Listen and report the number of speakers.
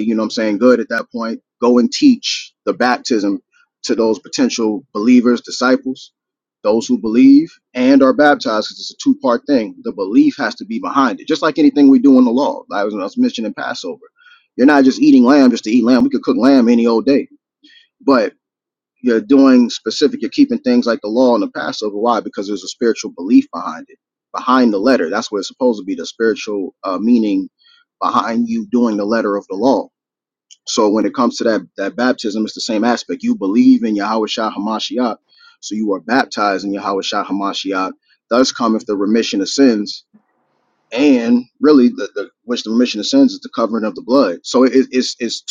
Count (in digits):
1